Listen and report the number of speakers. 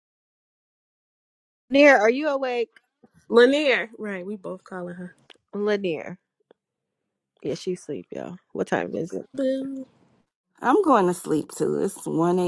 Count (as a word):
three